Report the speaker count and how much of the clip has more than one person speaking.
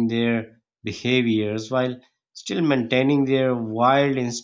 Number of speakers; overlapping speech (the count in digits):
1, no overlap